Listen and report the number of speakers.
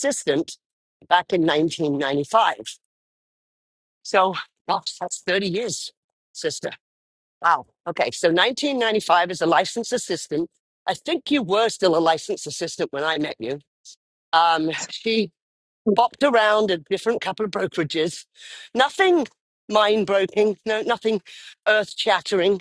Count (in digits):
1